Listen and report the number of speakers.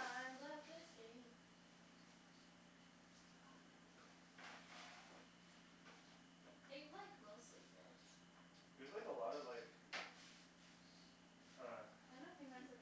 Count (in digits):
2